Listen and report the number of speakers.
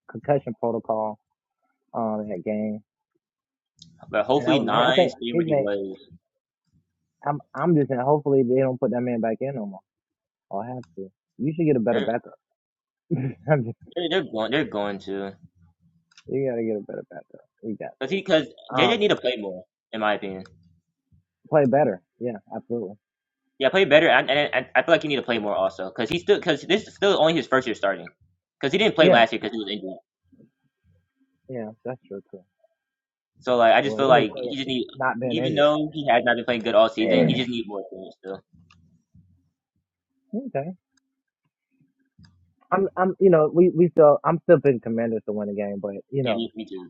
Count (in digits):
2